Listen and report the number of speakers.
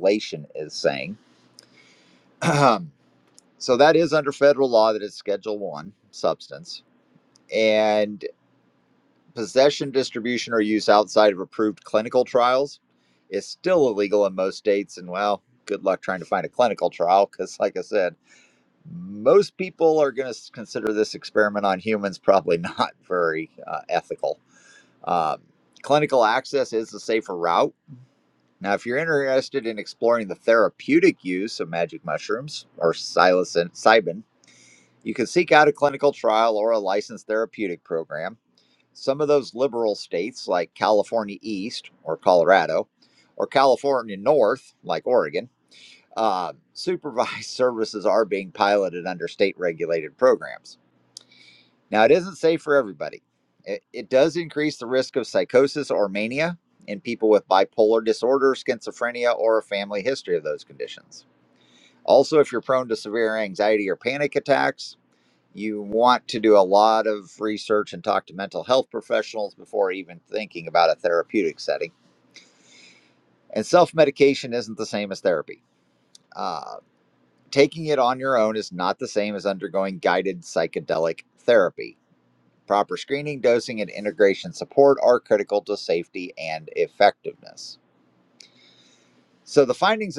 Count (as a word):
one